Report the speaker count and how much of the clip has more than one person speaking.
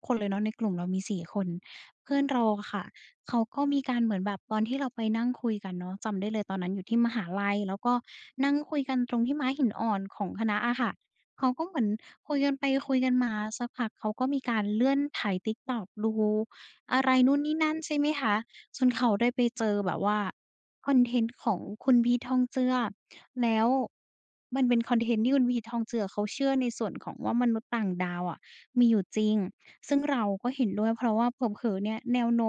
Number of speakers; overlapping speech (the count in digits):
1, no overlap